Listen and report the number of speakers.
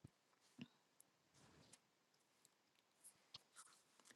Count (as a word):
zero